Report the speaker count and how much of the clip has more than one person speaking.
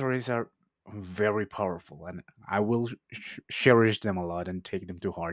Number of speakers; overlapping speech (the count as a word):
one, no overlap